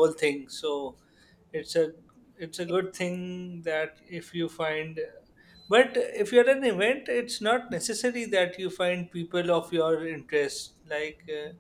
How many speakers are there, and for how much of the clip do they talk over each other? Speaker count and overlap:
one, no overlap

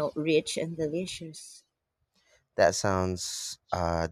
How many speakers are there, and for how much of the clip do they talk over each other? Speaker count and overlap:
two, no overlap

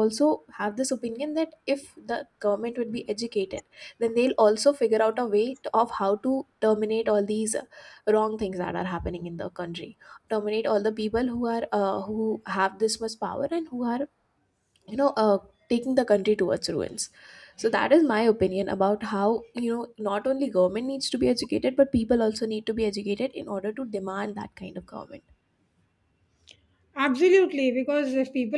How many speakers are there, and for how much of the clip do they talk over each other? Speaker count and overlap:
two, no overlap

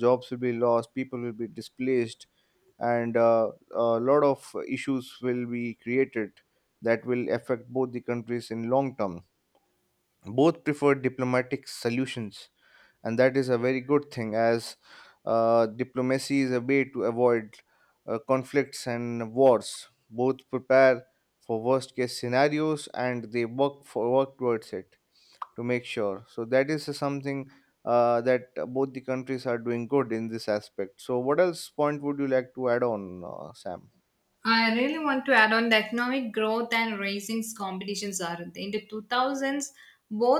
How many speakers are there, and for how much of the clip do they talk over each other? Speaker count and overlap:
two, no overlap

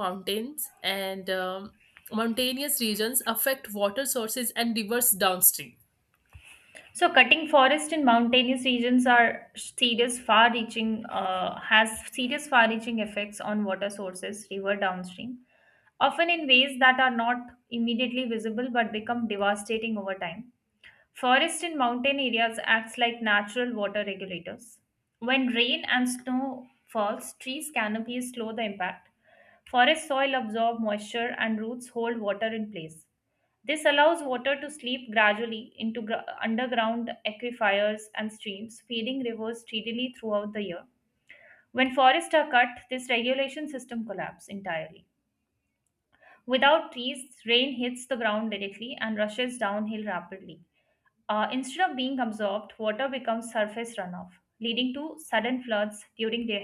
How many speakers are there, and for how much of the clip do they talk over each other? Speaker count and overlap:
two, no overlap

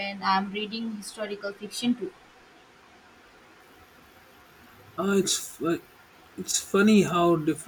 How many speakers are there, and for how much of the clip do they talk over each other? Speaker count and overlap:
two, no overlap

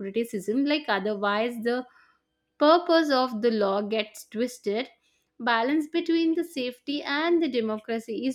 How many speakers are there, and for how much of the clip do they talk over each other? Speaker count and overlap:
one, no overlap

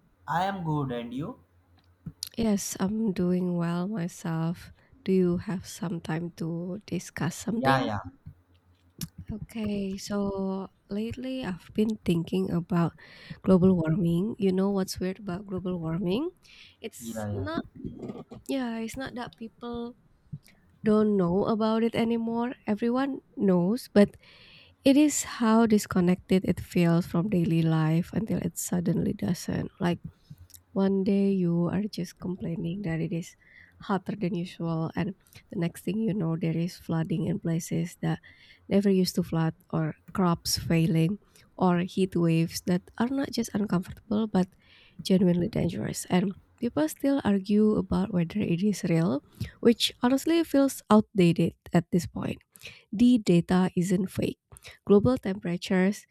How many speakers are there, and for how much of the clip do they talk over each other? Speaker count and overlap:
two, about 1%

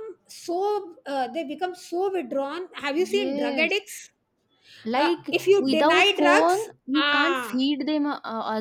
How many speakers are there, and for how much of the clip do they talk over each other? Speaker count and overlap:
two, about 34%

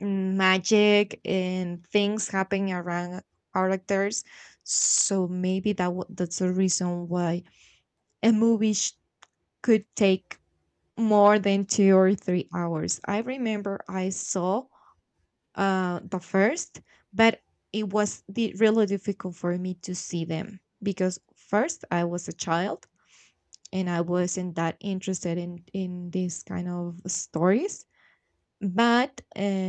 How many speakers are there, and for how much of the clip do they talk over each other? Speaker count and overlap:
one, no overlap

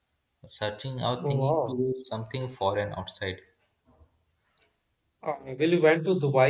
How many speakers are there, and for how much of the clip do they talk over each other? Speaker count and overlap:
two, about 9%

